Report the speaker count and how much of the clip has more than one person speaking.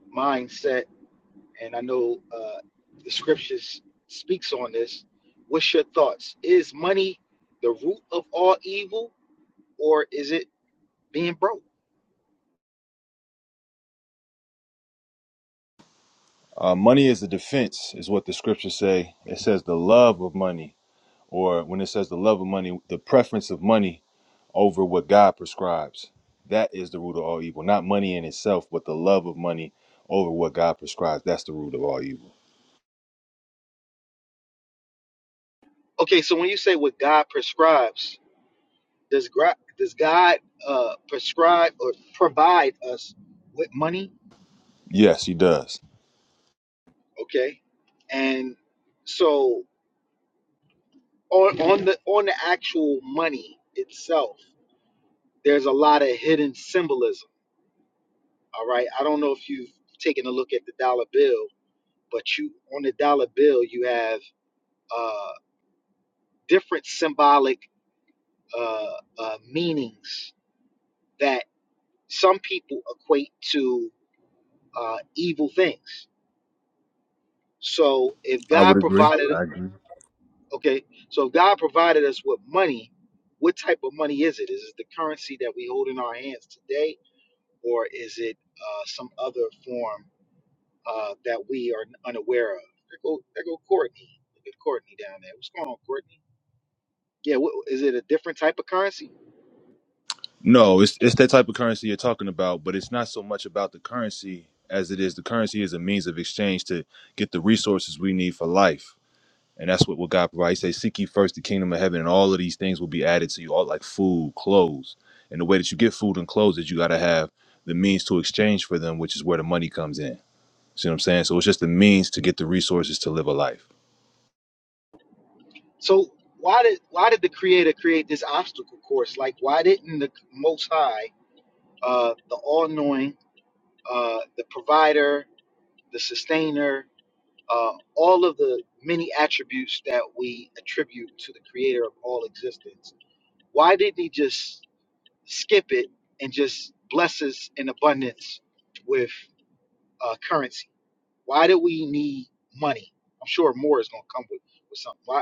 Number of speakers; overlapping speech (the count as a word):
two, about 1%